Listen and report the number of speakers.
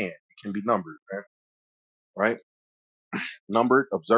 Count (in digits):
1